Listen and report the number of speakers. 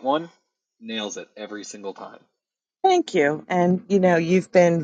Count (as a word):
two